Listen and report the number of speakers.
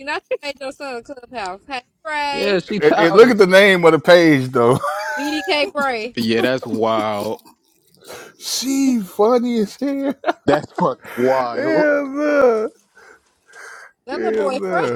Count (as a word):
three